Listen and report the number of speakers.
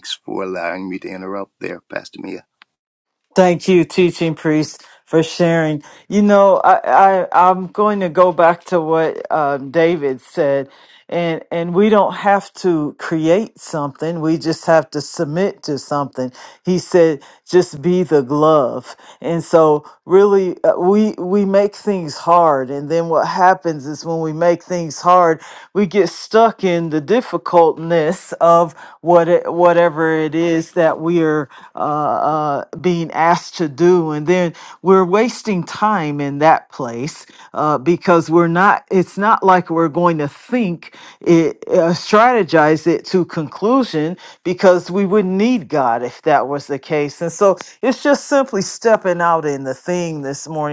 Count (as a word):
two